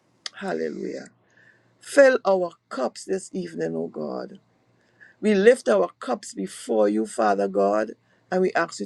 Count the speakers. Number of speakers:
one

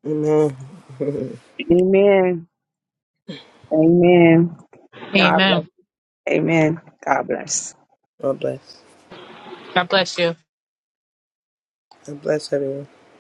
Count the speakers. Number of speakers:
three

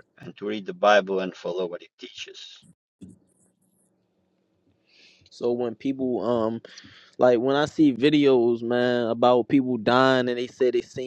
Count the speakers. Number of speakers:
two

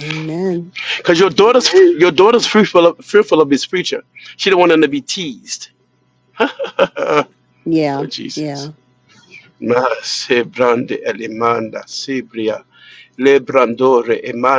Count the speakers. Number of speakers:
two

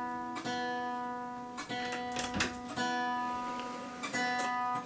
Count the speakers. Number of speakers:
zero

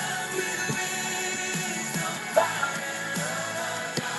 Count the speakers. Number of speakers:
zero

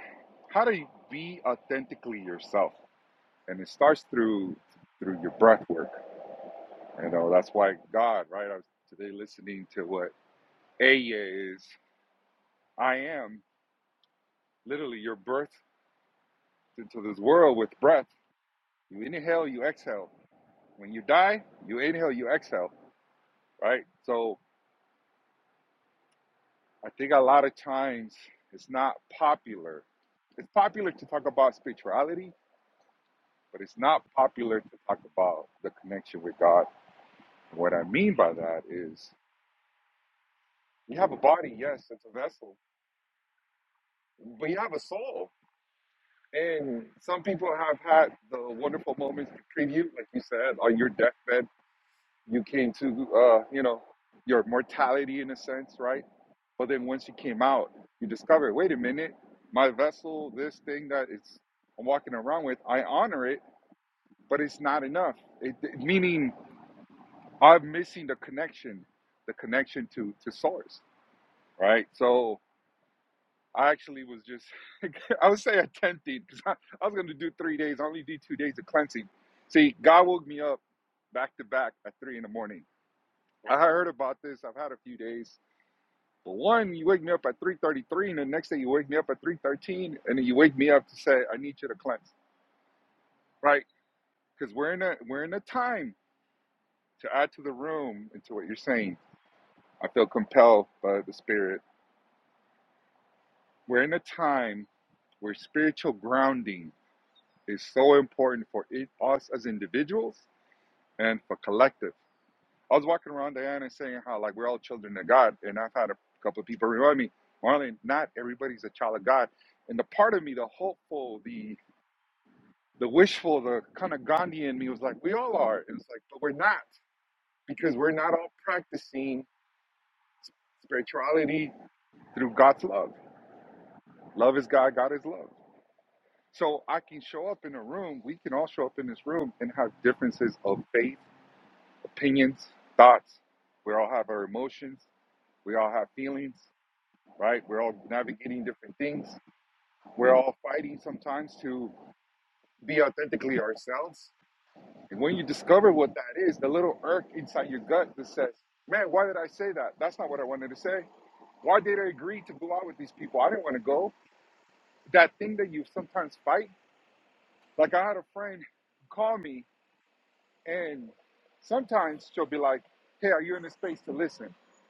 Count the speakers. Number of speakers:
one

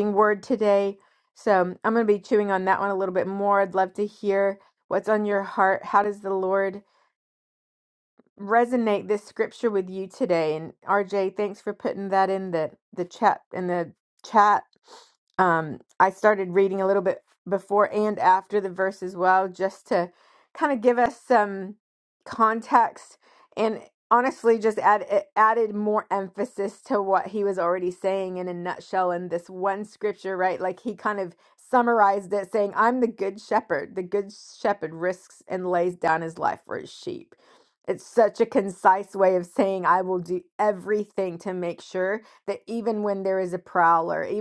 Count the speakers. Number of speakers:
one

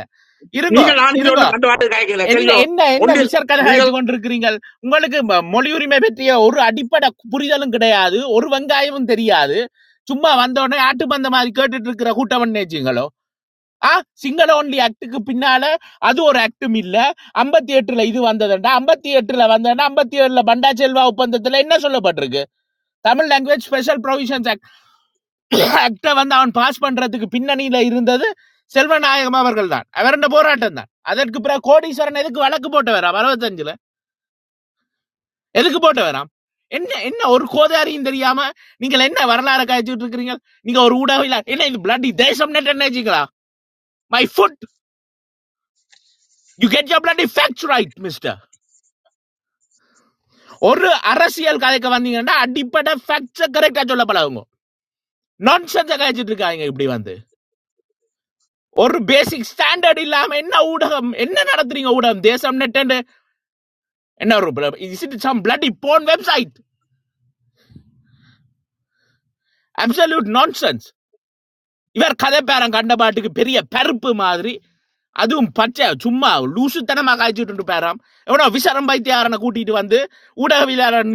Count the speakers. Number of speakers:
two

